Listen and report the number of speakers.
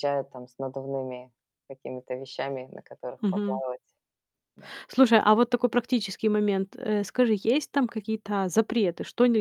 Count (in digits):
2